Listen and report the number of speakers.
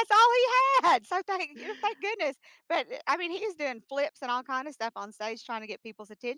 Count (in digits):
1